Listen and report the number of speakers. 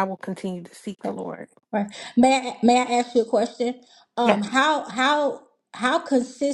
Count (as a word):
two